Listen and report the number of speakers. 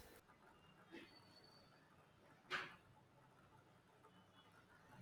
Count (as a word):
zero